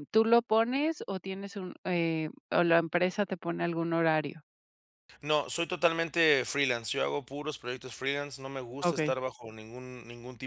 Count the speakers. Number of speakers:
two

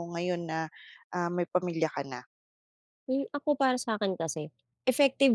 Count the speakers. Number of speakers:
two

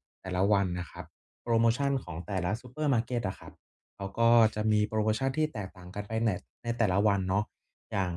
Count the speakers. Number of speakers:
one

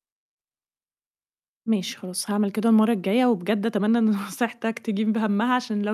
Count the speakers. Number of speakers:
one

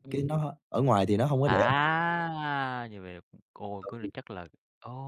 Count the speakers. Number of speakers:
two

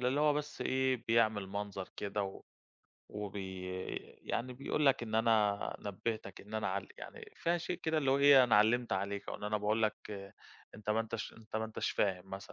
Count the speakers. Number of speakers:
one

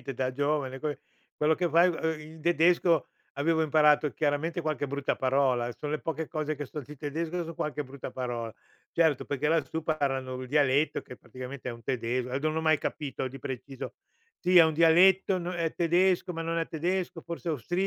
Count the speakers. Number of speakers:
one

